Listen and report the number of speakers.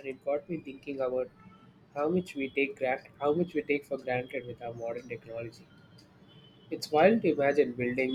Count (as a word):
one